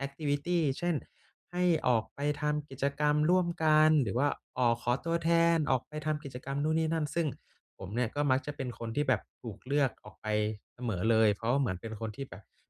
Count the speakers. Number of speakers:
one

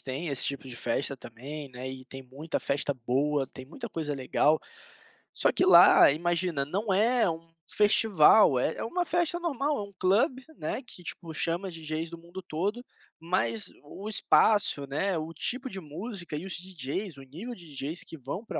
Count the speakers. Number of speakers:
one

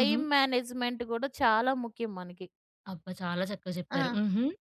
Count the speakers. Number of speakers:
two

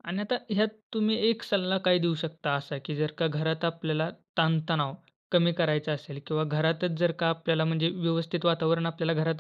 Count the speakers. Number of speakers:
one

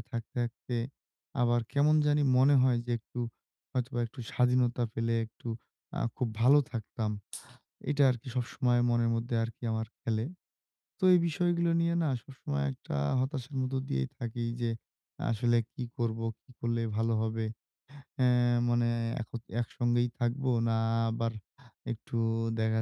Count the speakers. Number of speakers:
one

